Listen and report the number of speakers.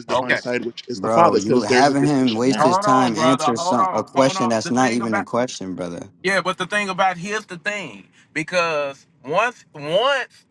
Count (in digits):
3